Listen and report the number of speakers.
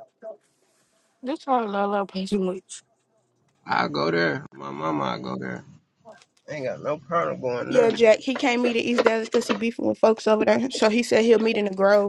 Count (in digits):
3